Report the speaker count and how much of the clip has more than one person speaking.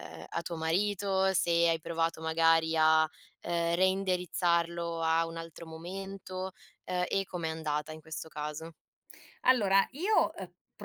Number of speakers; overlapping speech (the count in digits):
2, no overlap